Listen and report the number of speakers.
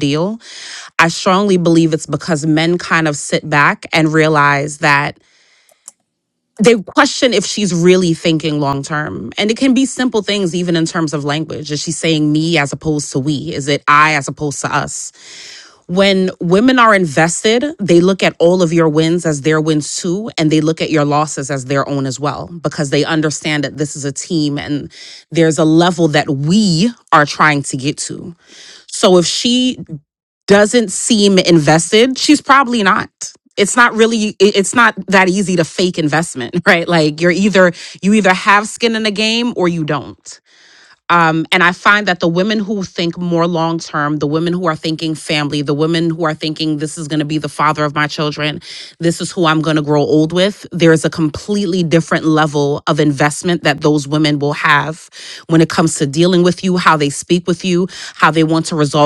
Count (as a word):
one